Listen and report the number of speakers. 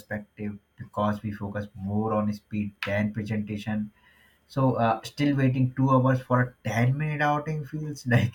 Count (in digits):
1